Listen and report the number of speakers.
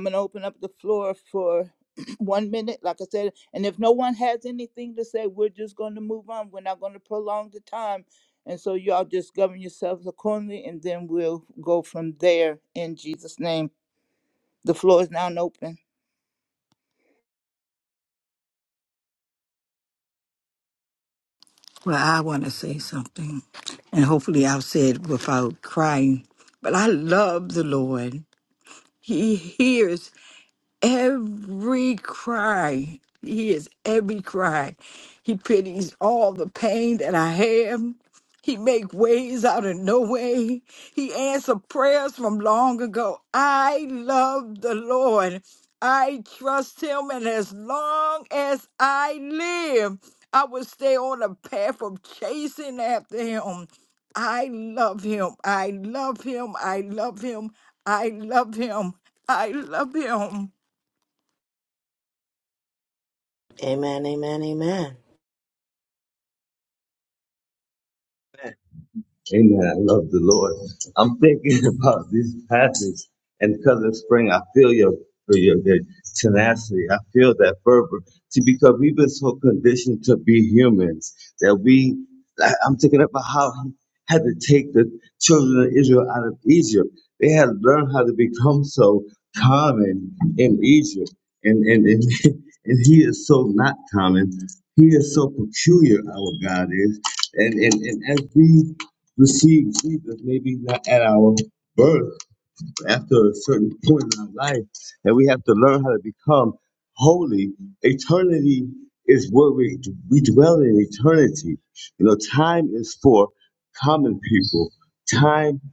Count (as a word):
four